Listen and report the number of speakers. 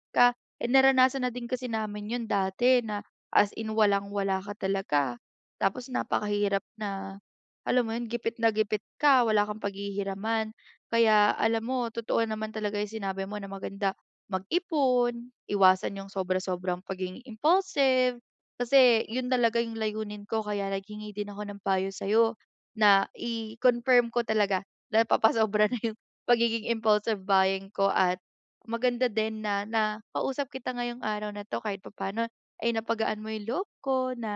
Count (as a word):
one